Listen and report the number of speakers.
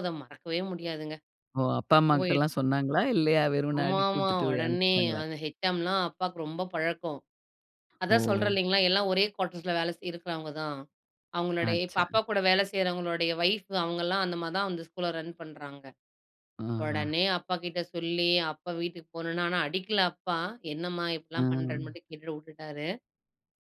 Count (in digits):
2